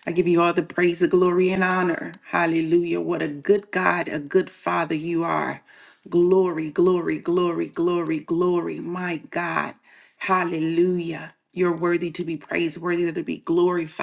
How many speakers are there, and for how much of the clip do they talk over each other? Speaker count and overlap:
1, no overlap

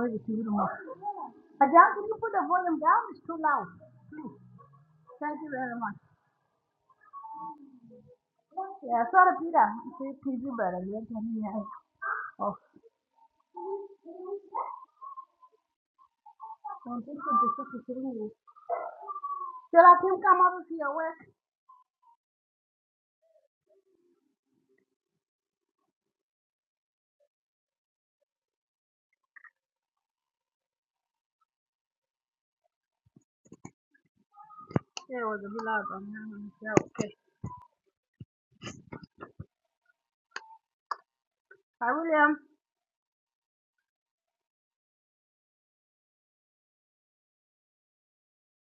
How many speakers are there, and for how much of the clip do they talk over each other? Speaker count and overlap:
1, no overlap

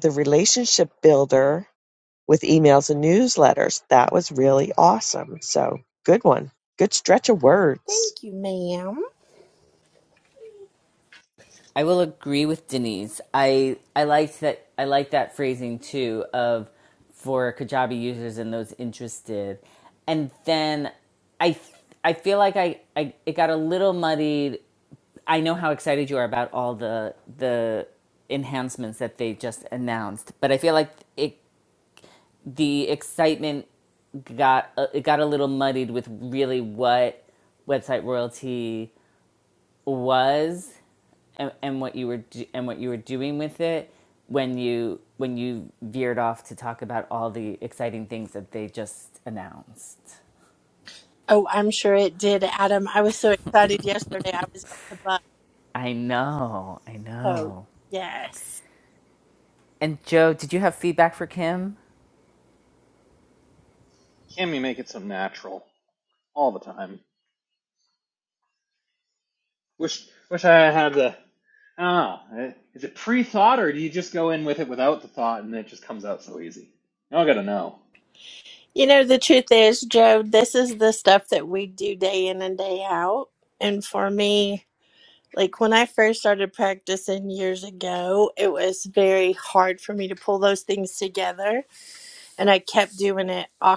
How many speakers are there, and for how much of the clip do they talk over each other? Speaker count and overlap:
4, under 1%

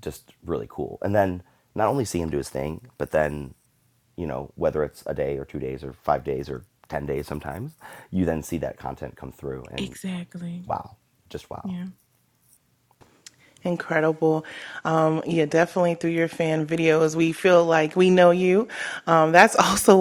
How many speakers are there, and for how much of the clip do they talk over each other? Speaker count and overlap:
3, about 1%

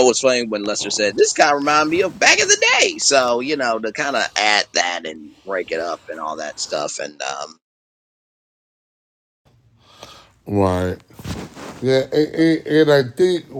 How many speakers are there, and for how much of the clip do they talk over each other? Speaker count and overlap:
2, no overlap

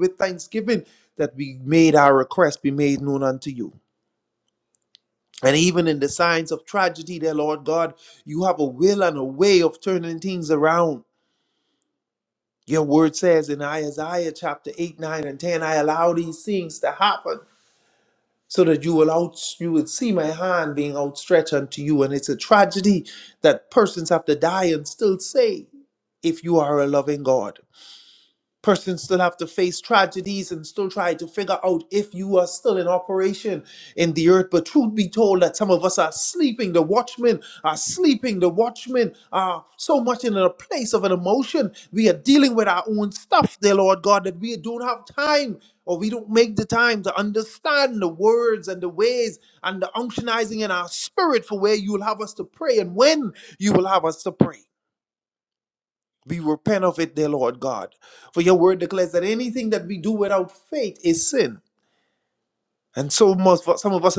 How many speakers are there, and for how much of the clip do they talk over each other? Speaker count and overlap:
1, no overlap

